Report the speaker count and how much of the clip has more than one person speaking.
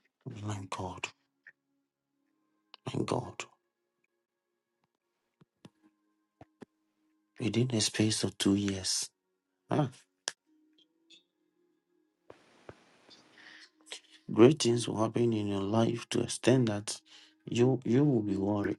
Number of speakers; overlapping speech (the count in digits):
1, no overlap